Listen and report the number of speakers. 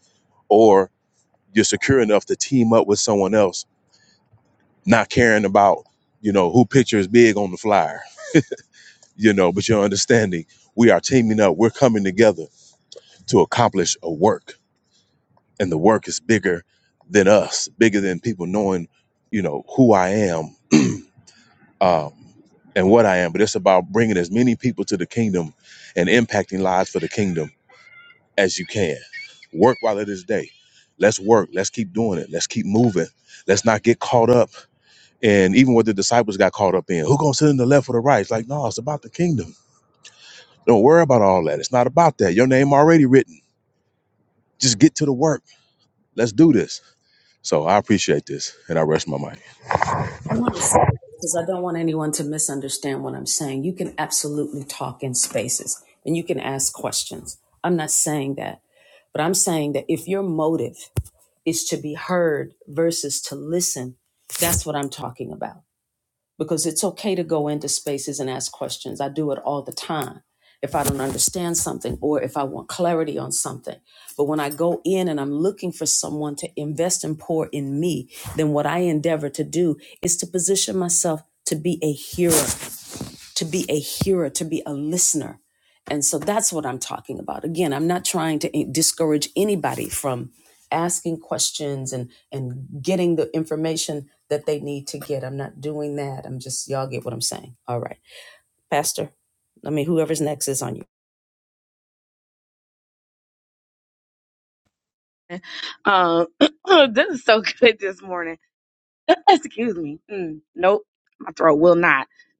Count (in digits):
3